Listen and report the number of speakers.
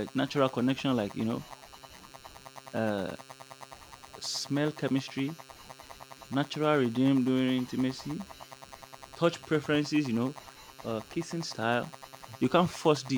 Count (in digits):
1